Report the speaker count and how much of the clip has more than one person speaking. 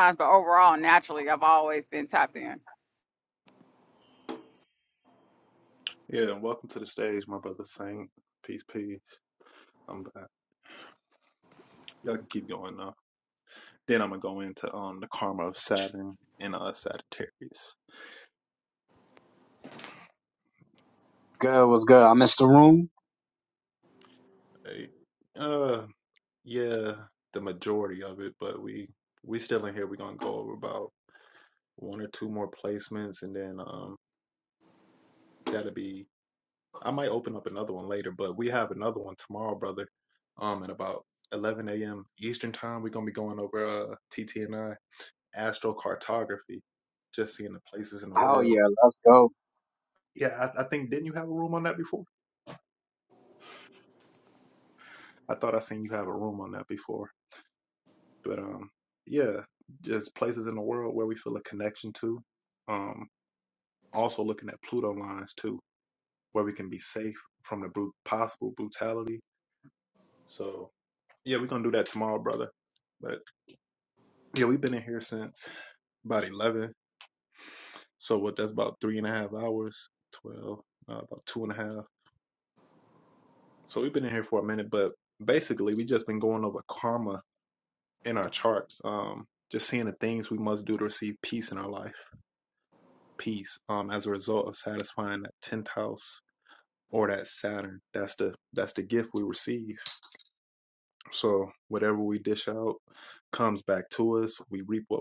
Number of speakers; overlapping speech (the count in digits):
3, under 1%